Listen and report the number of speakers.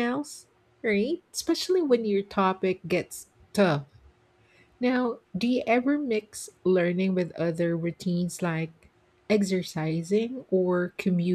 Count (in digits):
1